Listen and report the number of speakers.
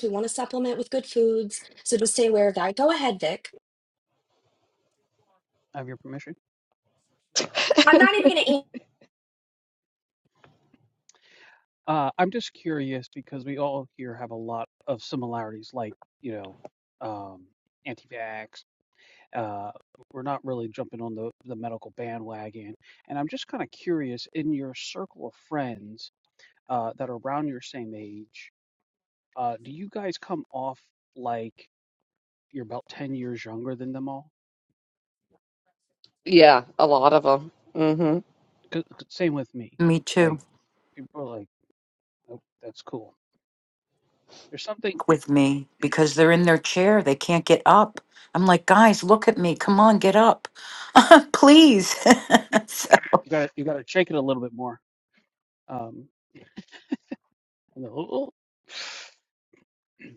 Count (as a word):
four